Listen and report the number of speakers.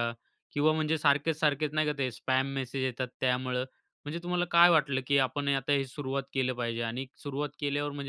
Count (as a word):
one